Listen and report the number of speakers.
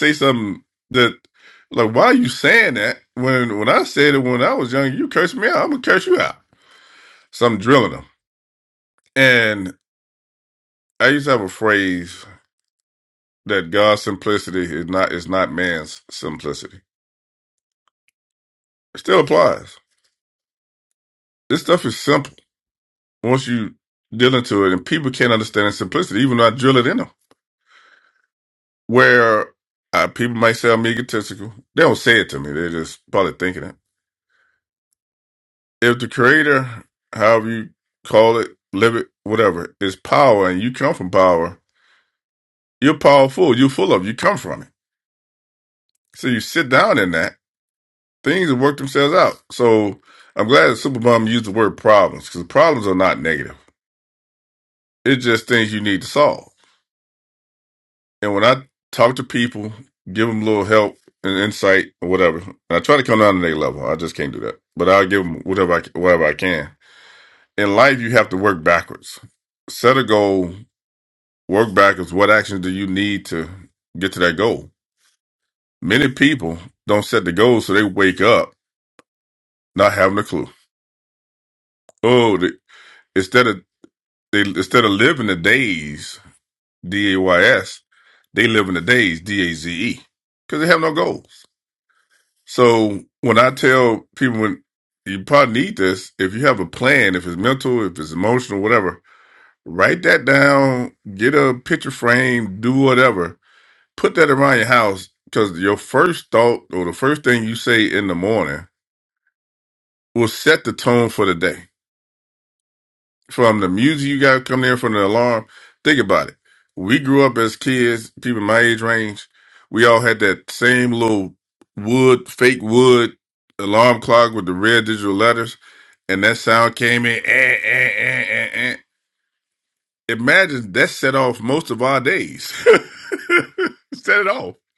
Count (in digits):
1